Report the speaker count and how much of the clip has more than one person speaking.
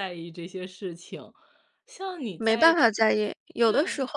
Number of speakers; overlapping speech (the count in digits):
2, about 20%